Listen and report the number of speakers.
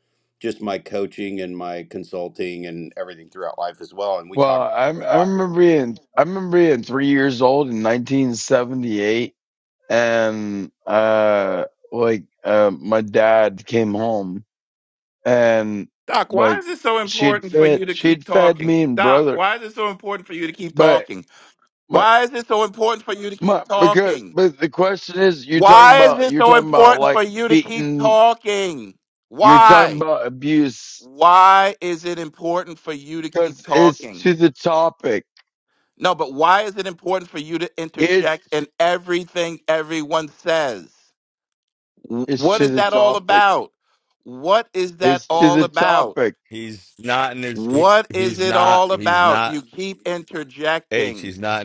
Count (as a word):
four